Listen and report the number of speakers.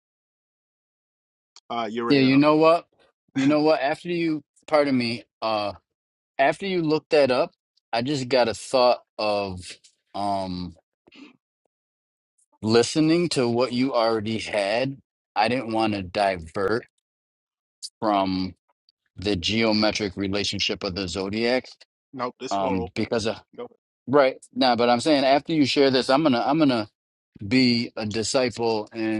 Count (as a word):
two